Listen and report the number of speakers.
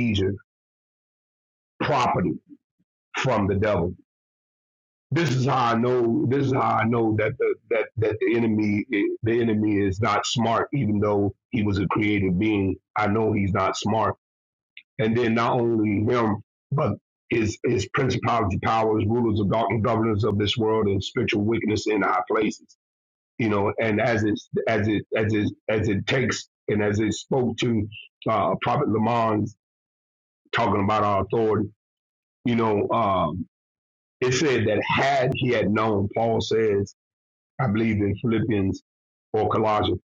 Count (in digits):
1